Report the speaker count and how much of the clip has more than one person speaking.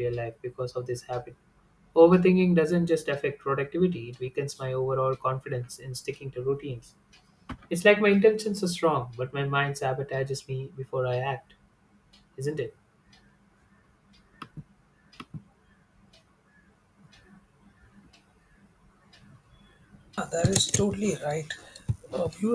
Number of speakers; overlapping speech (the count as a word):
two, no overlap